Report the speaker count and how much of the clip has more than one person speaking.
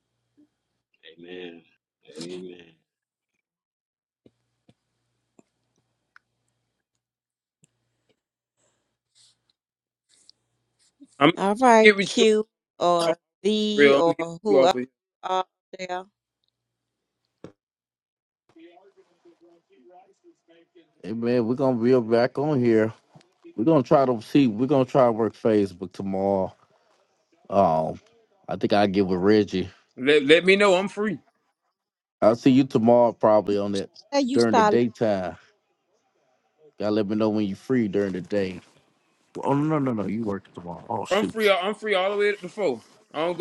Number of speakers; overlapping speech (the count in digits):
4, about 5%